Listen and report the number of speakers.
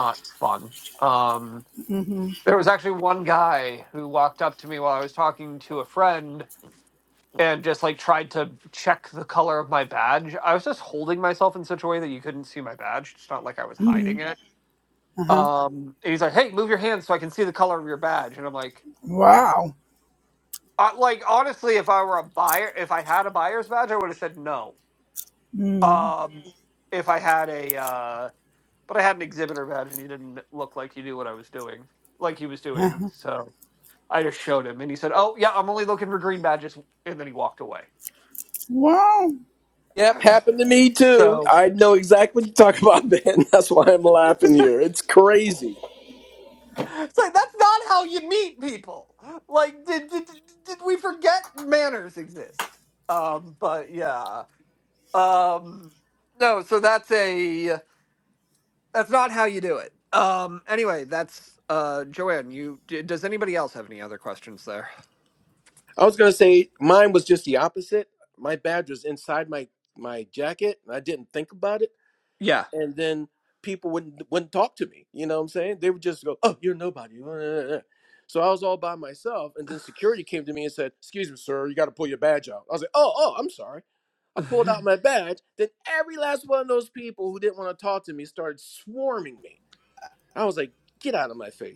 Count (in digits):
3